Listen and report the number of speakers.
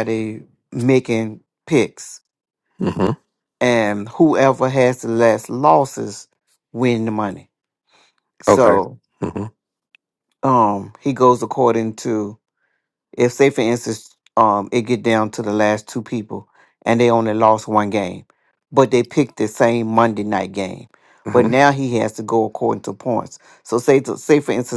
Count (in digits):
2